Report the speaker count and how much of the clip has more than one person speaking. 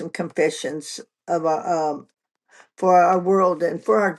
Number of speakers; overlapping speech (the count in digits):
1, no overlap